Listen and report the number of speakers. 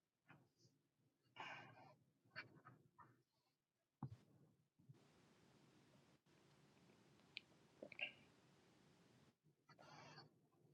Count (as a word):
zero